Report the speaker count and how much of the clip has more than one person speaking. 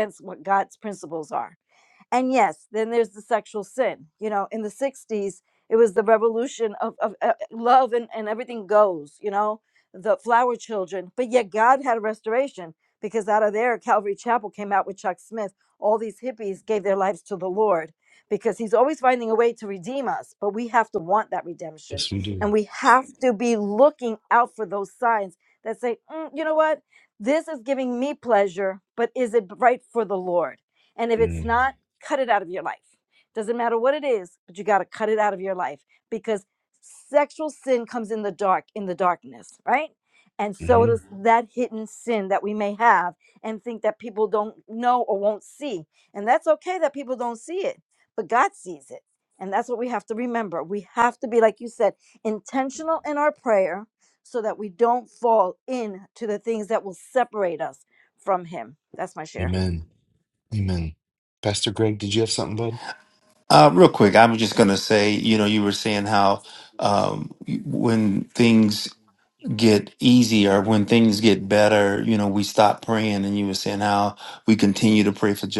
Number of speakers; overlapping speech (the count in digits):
3, about 1%